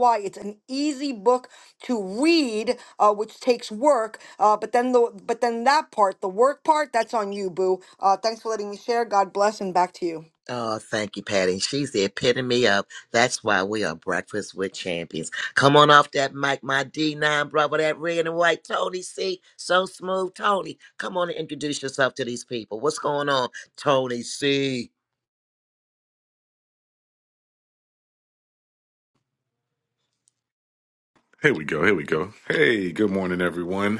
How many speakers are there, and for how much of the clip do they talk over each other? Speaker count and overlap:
3, no overlap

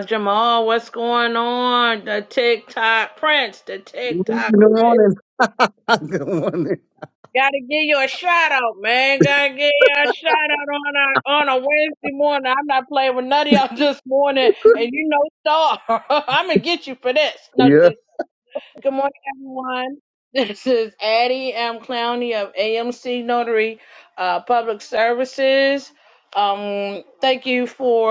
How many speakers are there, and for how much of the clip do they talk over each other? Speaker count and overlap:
2, about 2%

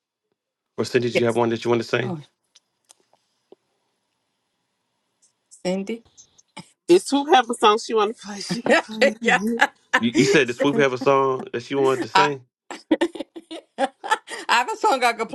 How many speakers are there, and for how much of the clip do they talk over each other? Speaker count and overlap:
3, about 2%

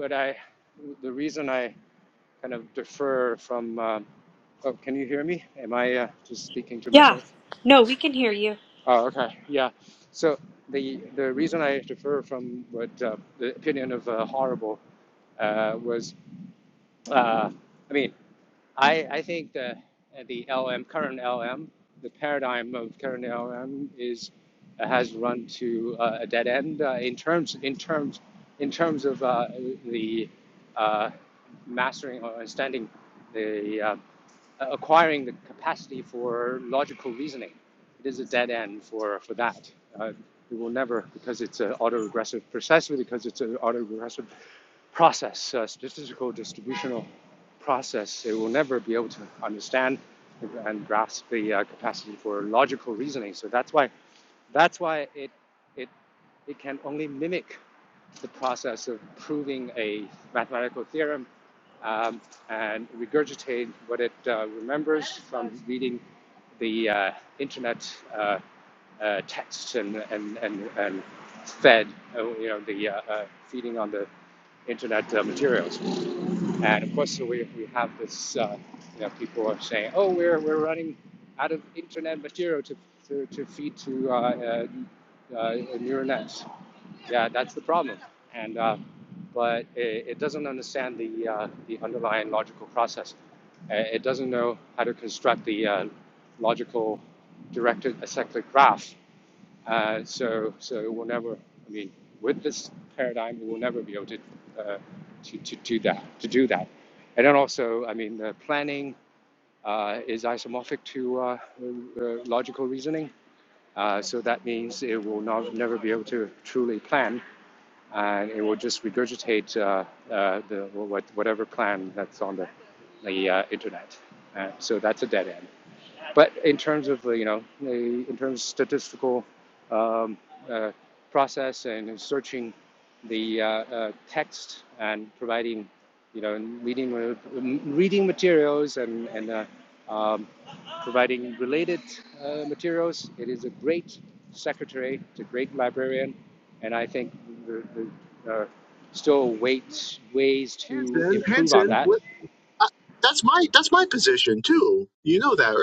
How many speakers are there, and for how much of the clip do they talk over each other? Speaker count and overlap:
3, about 1%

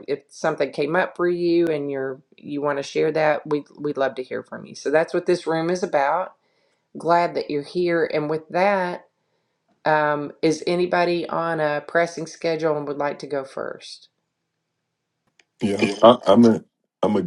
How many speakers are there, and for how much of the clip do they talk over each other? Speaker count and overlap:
2, no overlap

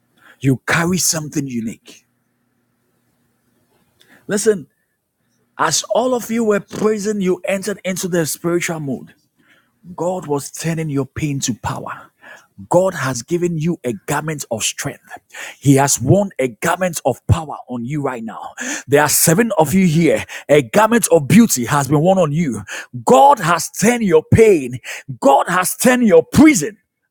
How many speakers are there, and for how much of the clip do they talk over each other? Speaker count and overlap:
1, no overlap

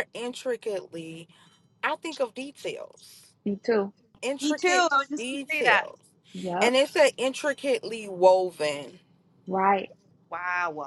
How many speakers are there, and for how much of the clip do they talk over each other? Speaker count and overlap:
3, about 11%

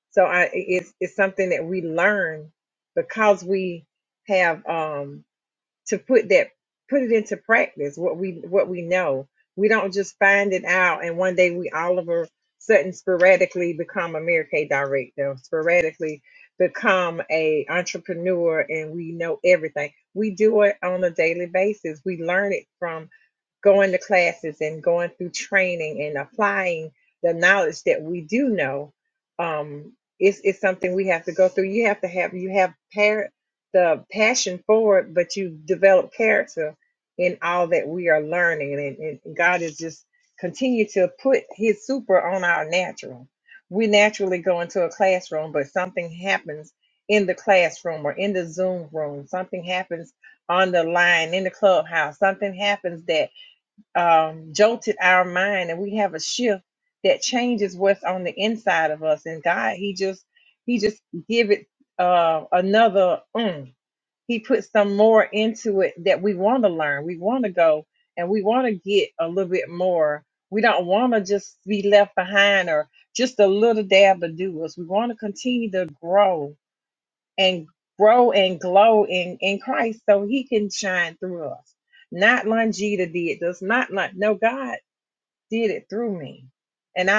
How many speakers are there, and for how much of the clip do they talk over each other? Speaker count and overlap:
1, no overlap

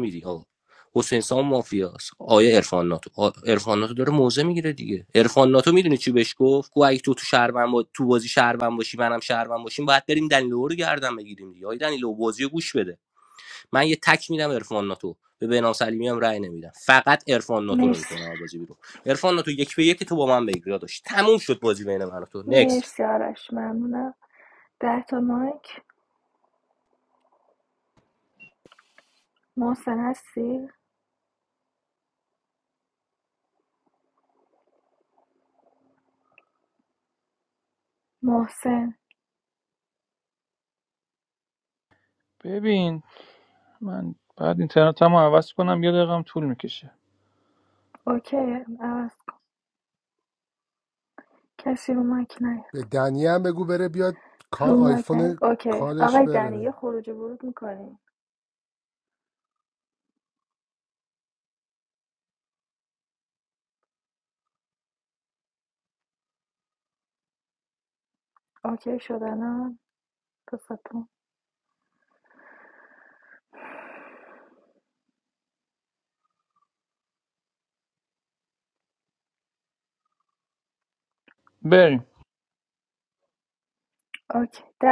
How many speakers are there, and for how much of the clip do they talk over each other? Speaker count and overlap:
4, about 3%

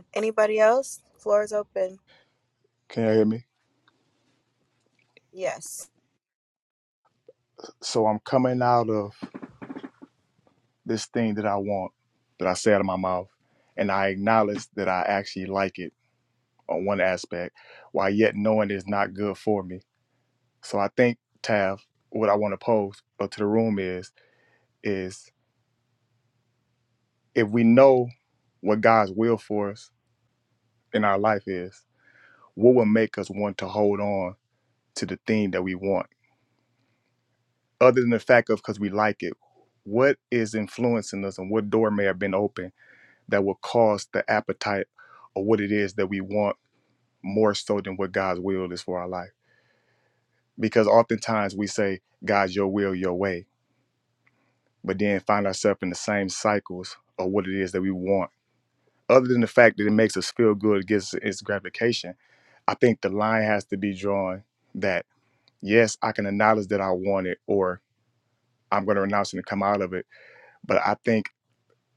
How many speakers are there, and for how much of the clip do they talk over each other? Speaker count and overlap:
2, no overlap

